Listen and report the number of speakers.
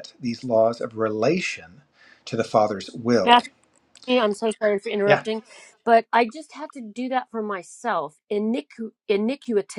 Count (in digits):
2